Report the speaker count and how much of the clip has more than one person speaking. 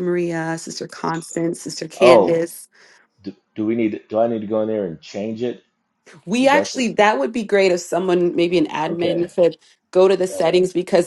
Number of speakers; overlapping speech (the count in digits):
2, about 13%